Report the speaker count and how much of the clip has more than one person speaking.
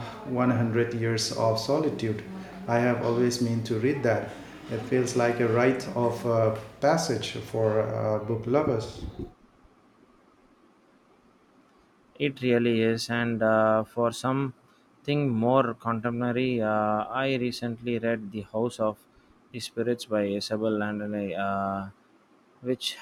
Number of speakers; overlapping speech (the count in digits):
2, no overlap